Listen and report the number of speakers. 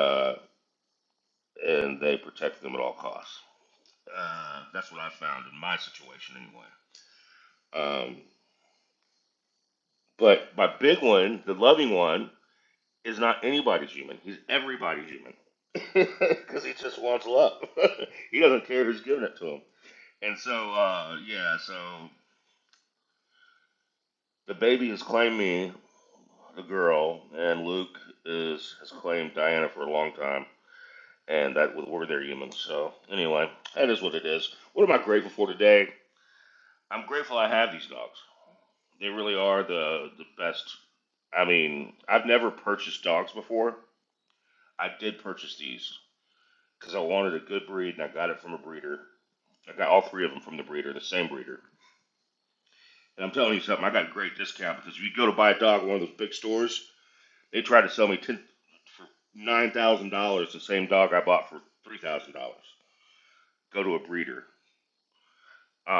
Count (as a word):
one